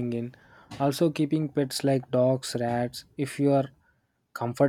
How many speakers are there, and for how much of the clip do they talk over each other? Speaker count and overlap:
1, no overlap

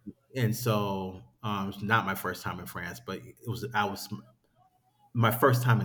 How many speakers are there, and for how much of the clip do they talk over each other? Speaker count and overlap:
1, no overlap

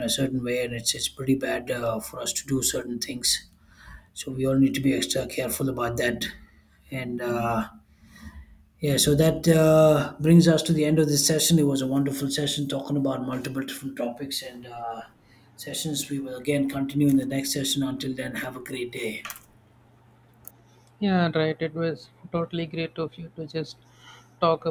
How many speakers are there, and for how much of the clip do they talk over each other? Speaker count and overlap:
2, no overlap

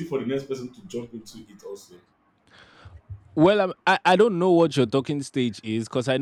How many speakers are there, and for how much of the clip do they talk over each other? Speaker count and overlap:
2, no overlap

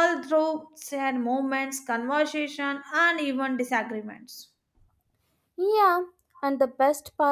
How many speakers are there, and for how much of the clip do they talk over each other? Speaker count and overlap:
2, no overlap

